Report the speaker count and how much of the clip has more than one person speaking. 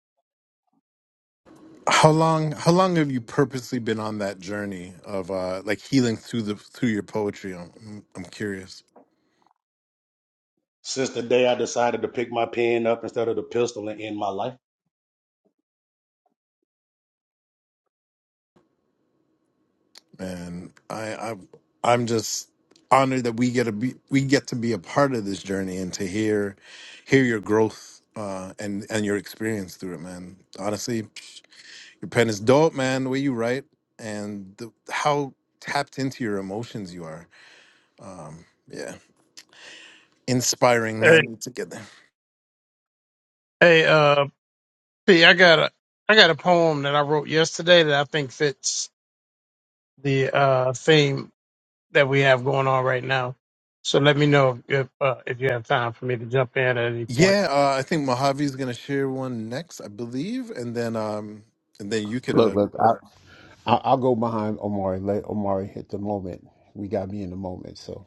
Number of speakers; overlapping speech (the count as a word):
four, about 1%